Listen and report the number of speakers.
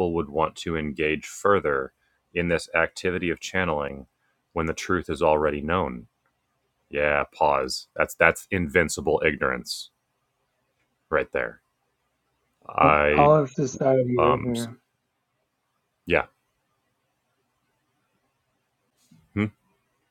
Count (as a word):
two